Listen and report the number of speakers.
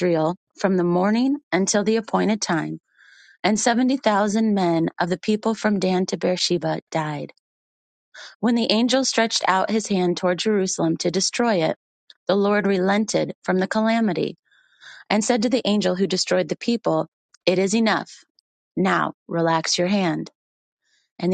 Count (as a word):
one